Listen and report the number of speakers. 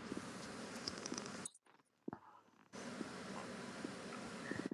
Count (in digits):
0